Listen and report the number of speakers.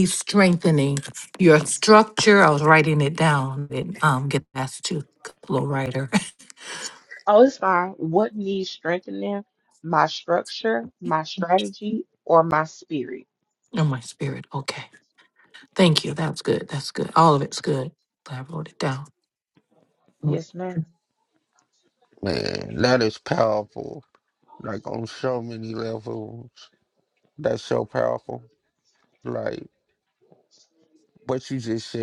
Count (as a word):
three